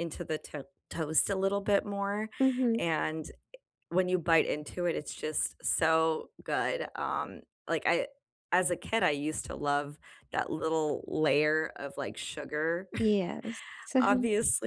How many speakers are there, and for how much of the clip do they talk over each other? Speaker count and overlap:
two, about 2%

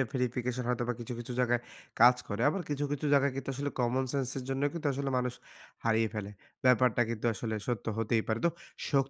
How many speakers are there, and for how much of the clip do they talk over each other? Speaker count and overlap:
one, no overlap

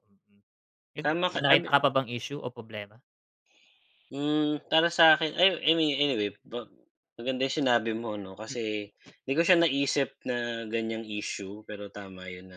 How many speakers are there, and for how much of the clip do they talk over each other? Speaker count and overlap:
two, about 3%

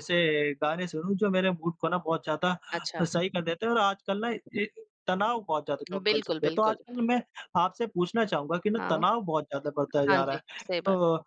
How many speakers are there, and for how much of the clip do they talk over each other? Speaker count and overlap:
two, about 15%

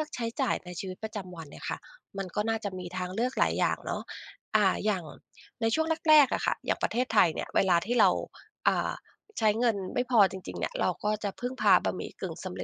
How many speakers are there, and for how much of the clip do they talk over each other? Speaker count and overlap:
one, no overlap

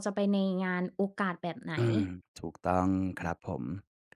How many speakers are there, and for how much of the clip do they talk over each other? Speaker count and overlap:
two, about 1%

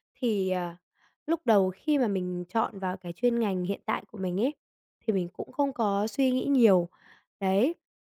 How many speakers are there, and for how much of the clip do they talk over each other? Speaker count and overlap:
one, no overlap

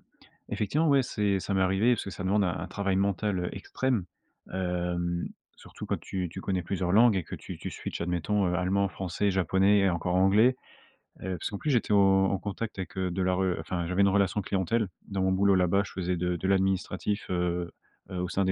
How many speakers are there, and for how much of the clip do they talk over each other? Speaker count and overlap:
one, no overlap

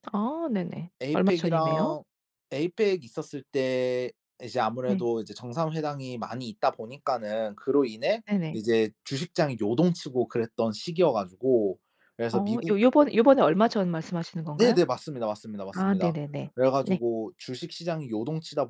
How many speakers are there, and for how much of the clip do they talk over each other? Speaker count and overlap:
two, about 12%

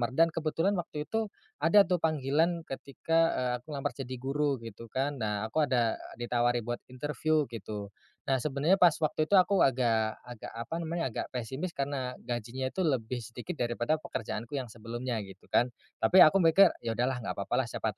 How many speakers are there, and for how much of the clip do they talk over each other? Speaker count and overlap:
one, no overlap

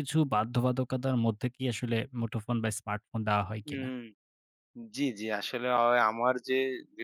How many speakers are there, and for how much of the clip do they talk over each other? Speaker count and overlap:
two, about 3%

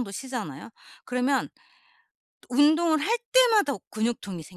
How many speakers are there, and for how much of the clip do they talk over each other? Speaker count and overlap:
one, no overlap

